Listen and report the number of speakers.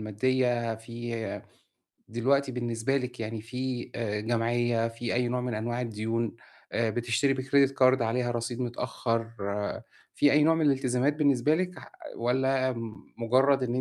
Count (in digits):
1